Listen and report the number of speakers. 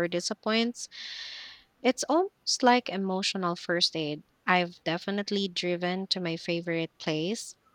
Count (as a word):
one